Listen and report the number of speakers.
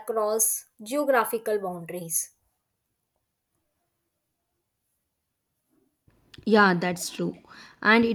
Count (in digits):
2